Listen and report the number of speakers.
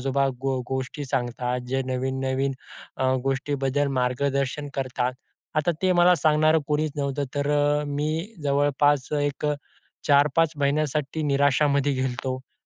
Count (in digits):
1